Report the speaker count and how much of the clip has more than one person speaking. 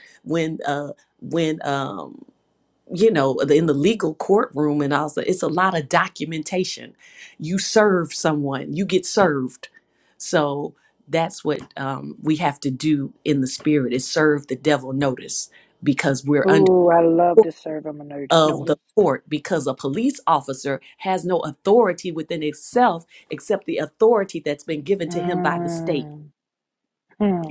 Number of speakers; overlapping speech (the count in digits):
2, about 6%